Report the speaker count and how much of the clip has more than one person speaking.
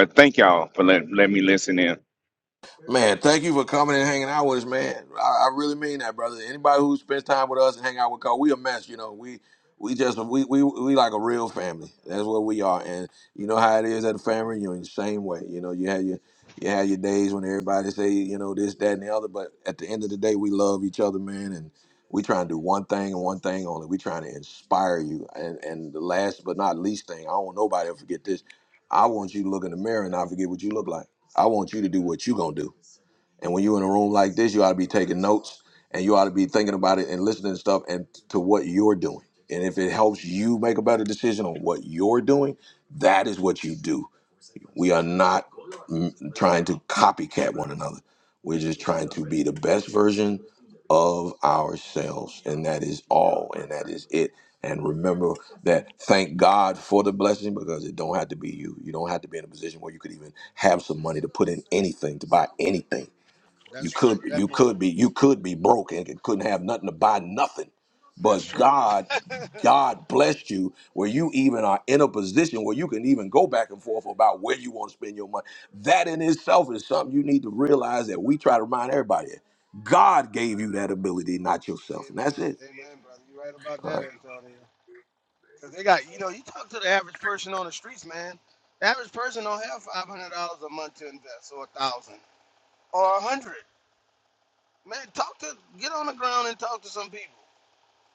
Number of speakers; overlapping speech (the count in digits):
3, about 2%